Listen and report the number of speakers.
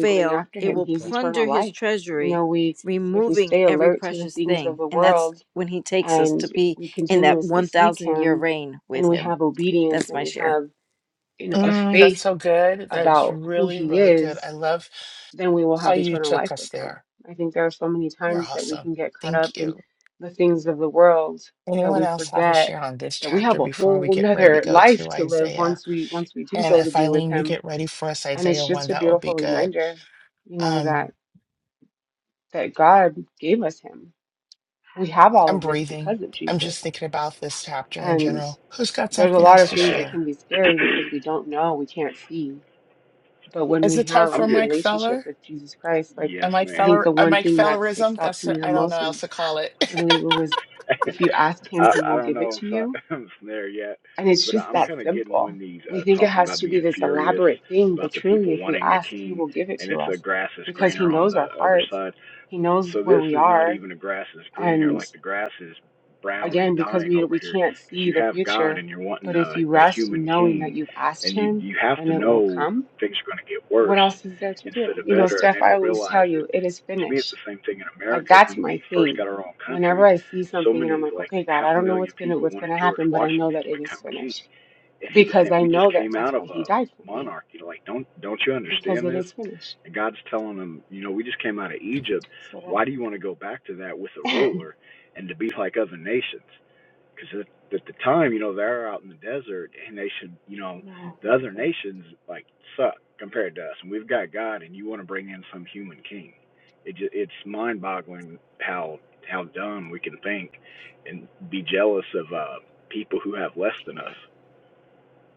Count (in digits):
4